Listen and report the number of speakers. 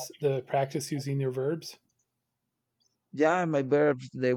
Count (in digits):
2